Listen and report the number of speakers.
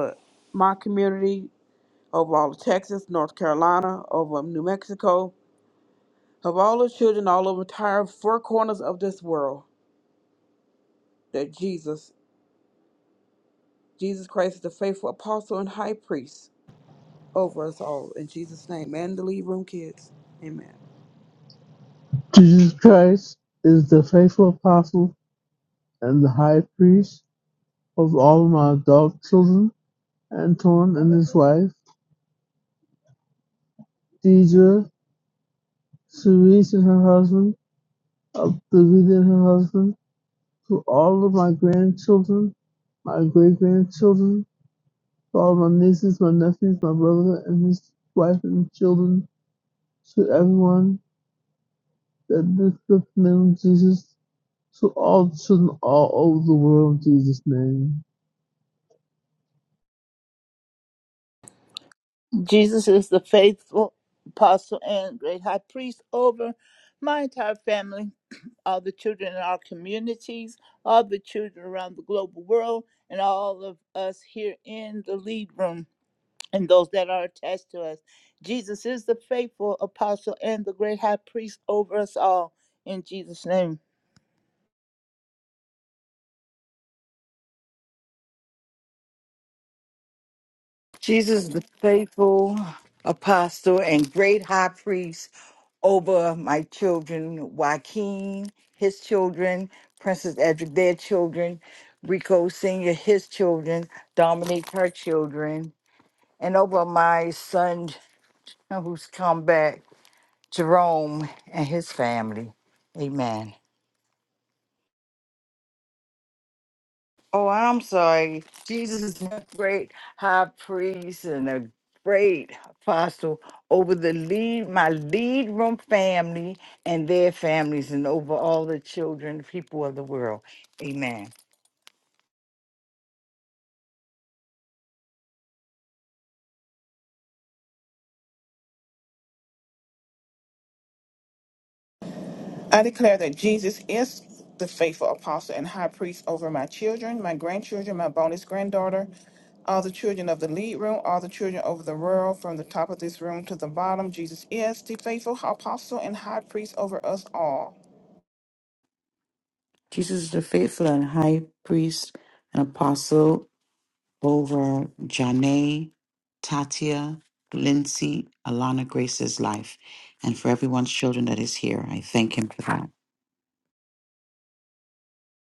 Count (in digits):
6